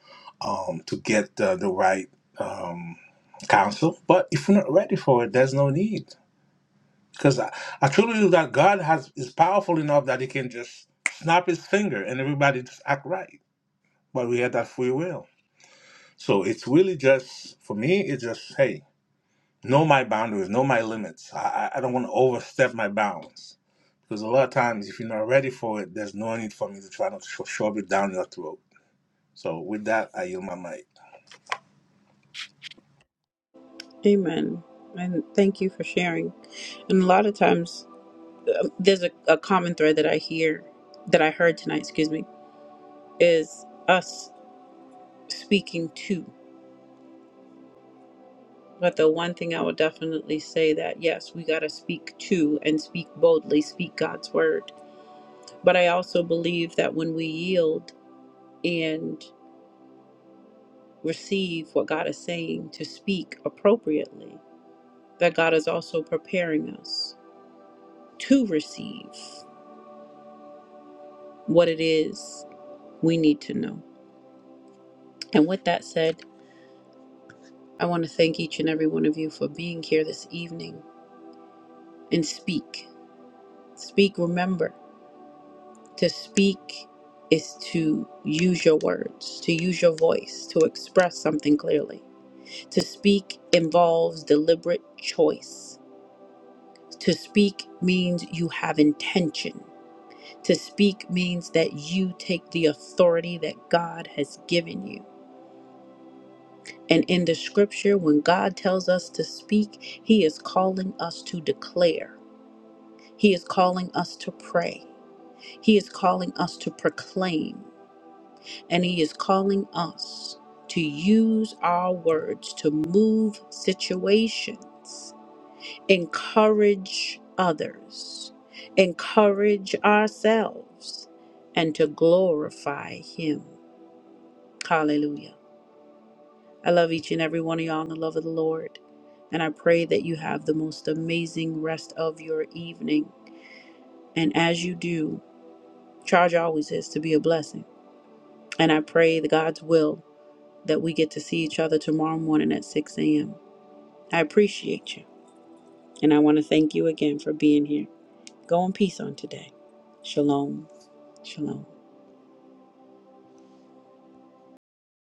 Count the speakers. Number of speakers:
two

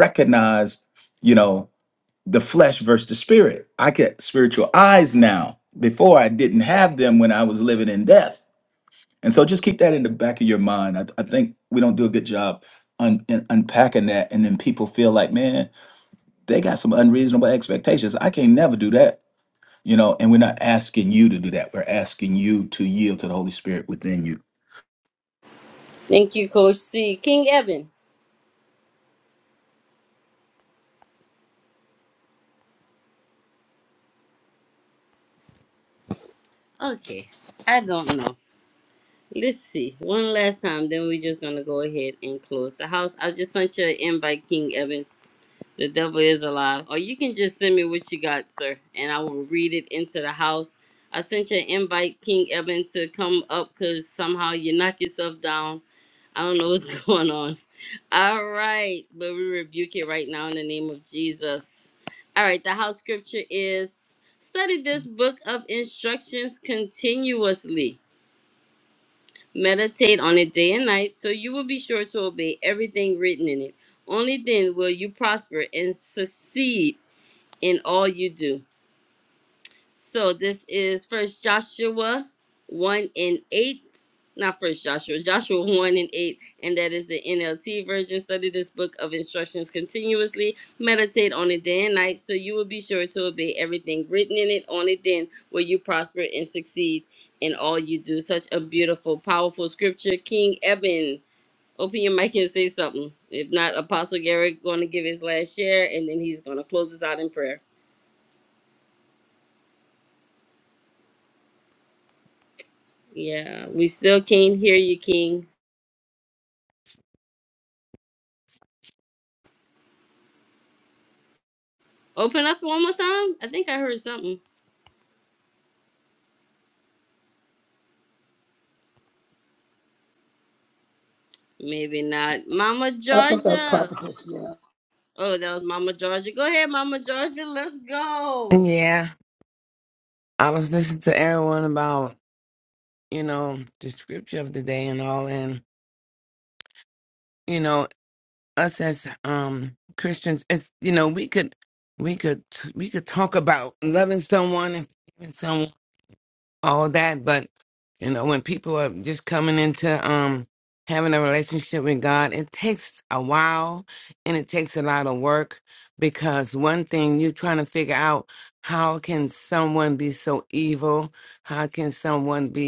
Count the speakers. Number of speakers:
four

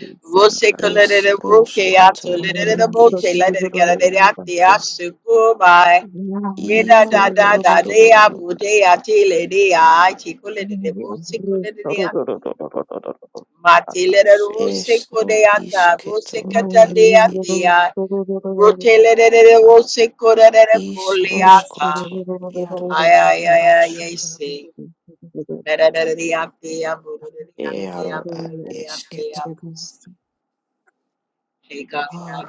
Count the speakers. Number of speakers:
three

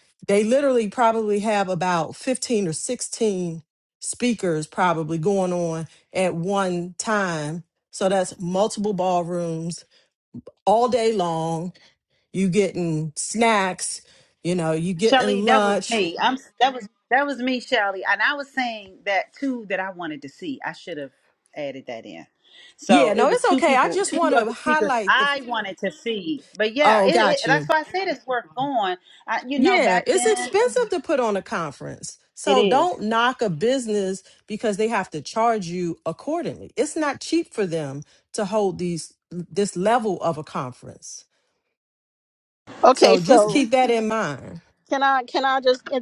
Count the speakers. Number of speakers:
three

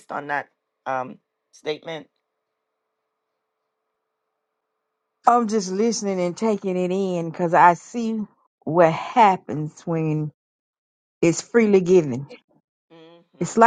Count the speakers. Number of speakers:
two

